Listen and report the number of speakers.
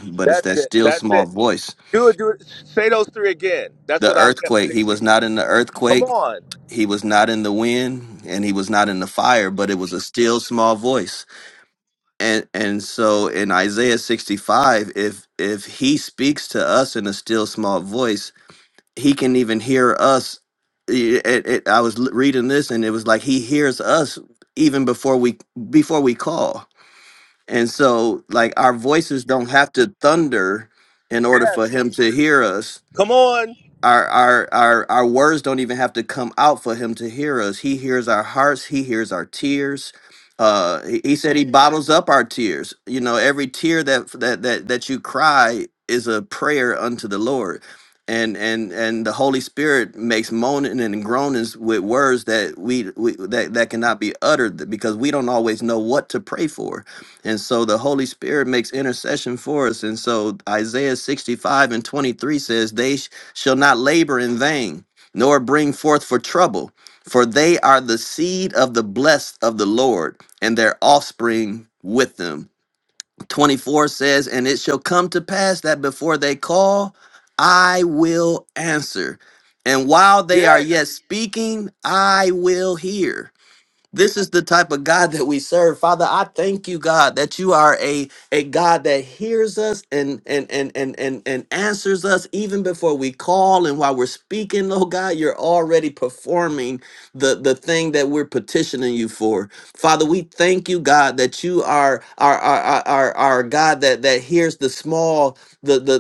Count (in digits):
2